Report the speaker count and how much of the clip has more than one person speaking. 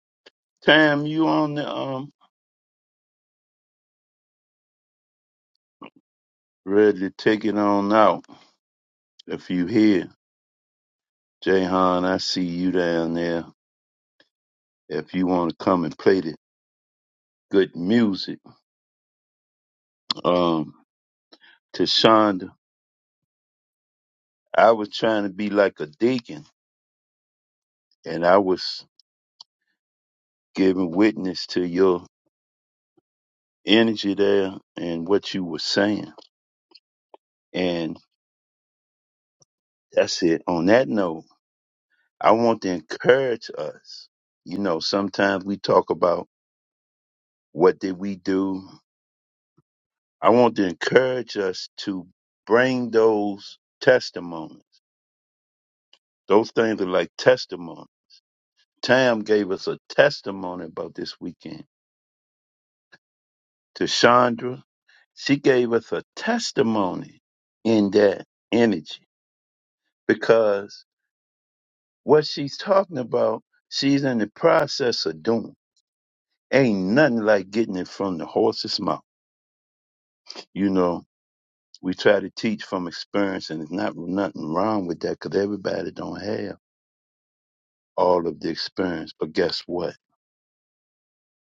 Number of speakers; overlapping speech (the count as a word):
one, no overlap